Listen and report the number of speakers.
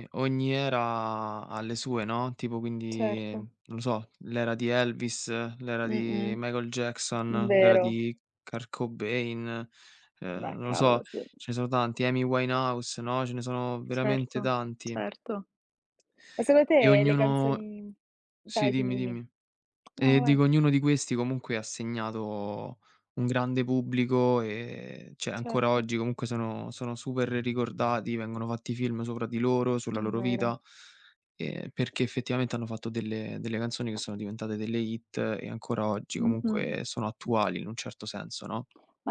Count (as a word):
two